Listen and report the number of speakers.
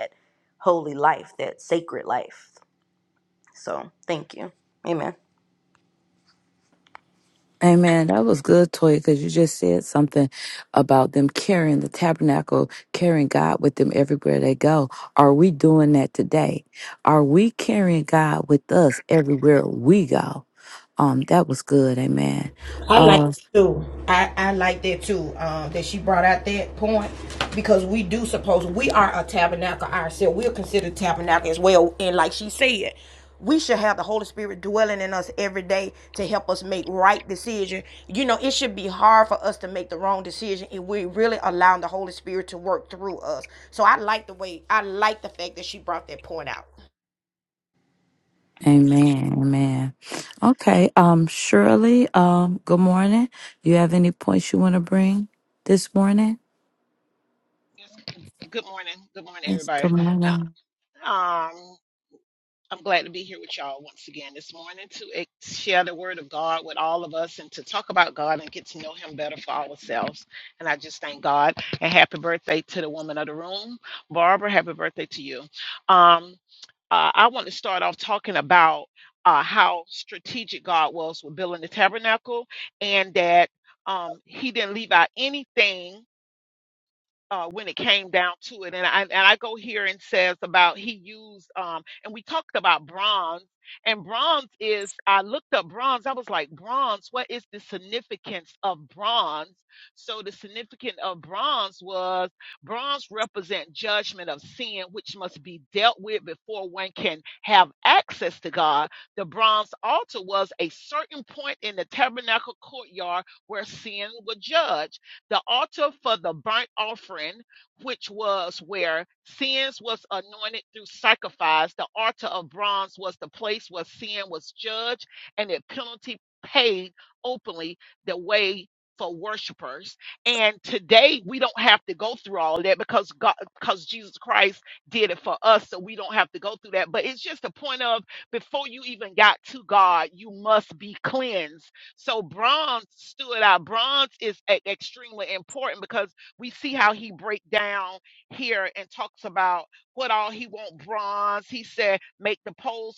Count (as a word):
four